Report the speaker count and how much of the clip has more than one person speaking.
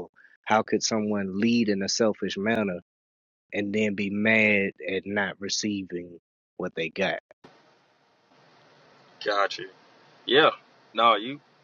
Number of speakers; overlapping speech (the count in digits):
2, no overlap